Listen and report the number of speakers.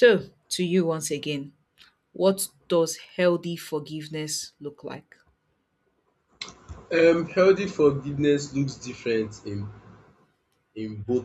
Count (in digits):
2